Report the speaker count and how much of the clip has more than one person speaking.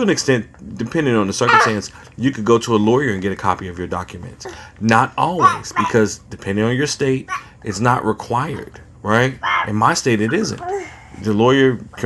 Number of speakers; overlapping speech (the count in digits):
1, no overlap